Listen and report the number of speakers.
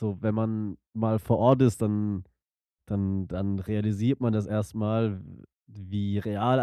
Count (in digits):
1